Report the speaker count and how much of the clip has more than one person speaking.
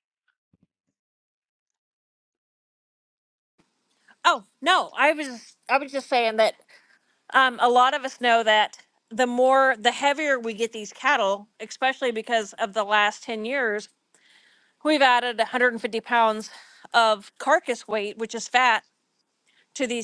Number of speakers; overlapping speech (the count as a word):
one, no overlap